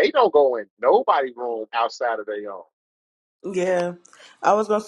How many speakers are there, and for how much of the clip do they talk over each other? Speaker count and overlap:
2, no overlap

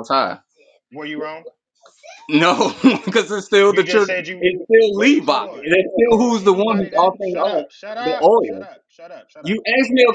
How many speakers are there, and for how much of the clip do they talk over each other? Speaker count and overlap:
2, about 42%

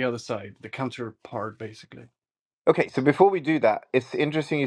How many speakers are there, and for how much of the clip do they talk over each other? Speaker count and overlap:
2, no overlap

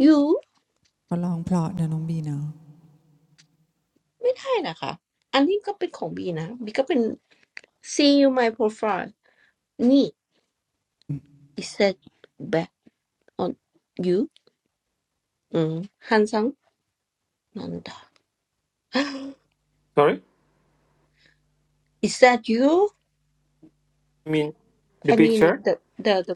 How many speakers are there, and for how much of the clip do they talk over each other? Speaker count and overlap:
3, about 2%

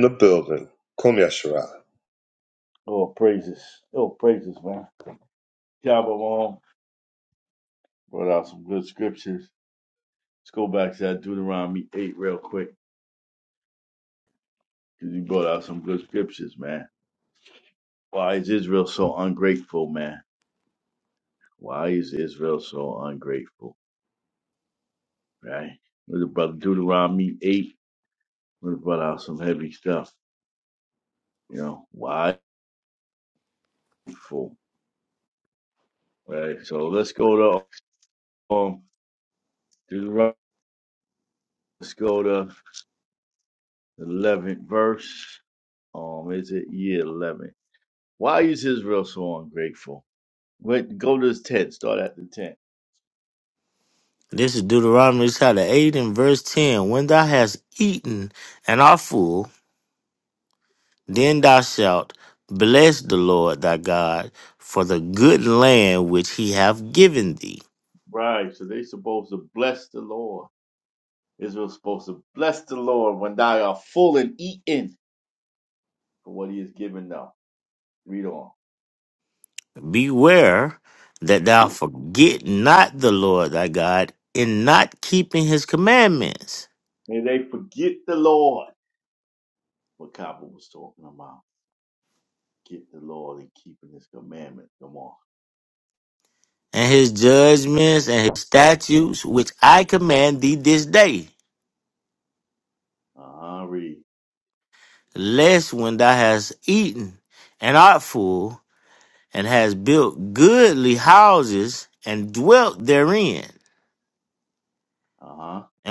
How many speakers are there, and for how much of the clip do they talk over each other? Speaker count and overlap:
3, under 1%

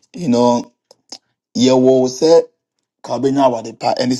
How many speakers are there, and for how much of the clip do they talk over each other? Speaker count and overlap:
1, no overlap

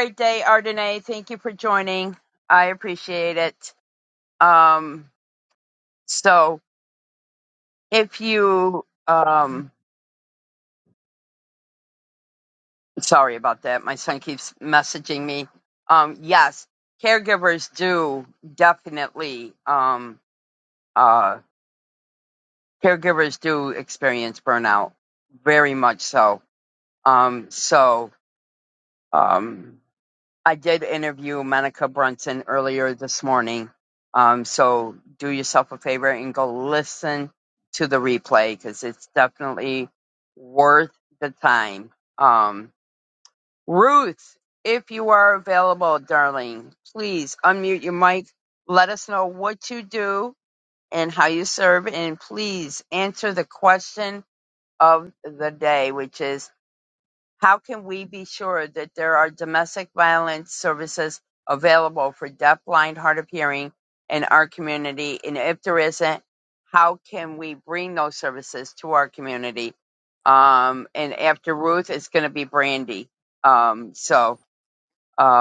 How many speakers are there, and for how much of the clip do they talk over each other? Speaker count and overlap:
1, no overlap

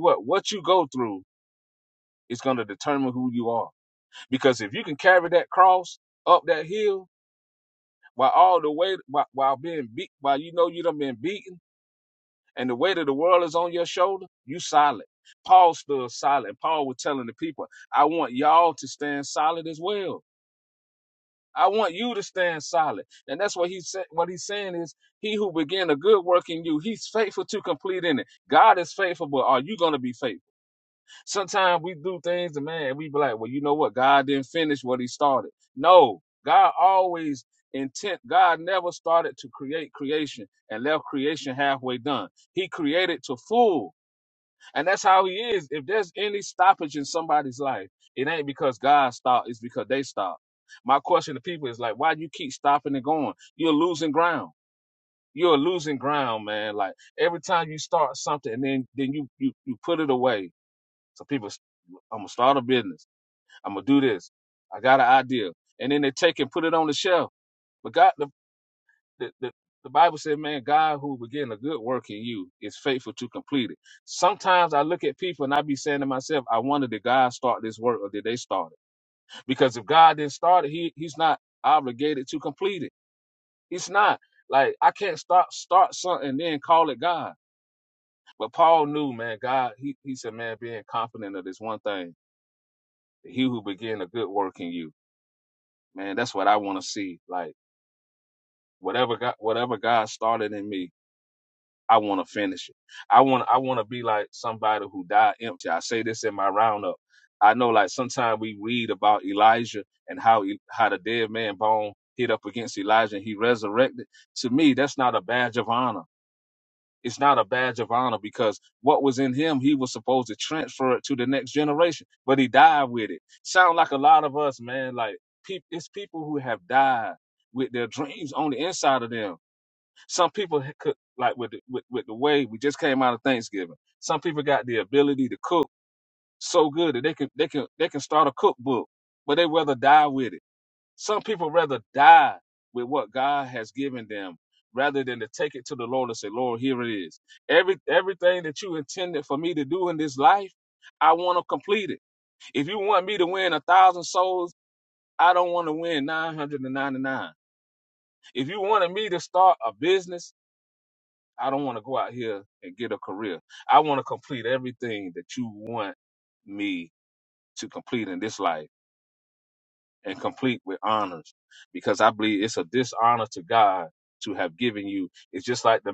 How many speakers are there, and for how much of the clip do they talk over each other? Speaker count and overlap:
1, no overlap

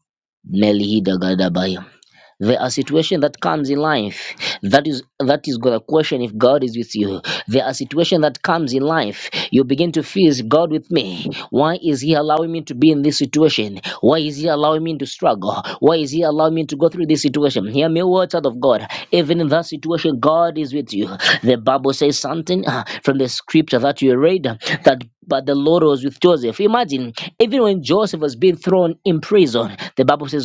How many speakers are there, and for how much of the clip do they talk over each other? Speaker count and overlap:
1, no overlap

